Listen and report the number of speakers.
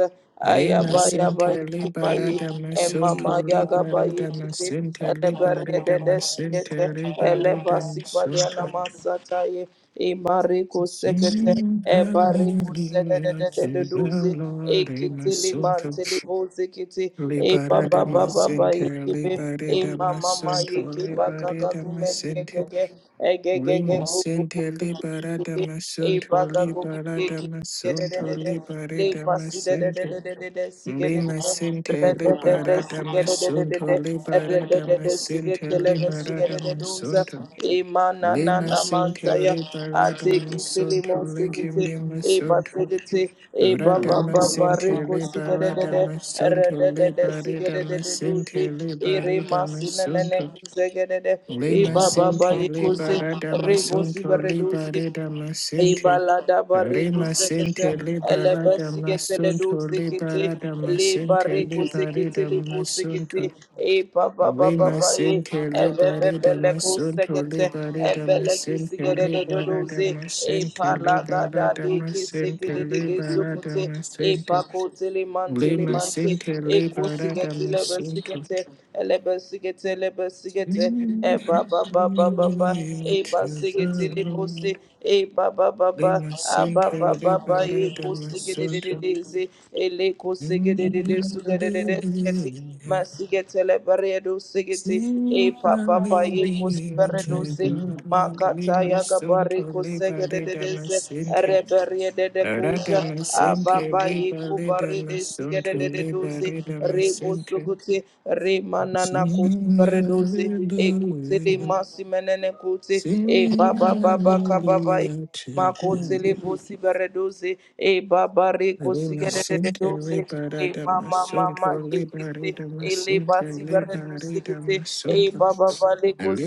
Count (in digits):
2